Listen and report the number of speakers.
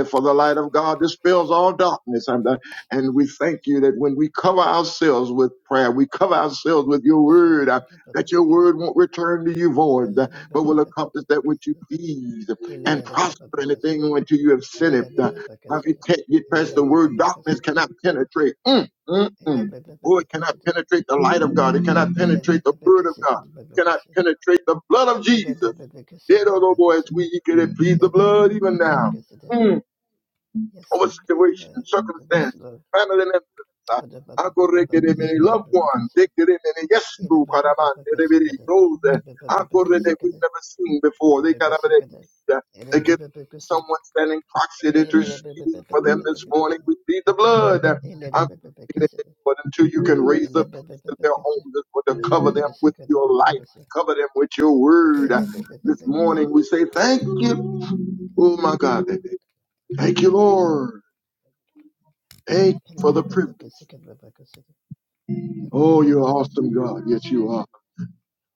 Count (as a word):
two